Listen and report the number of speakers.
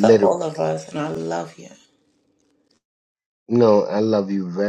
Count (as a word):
two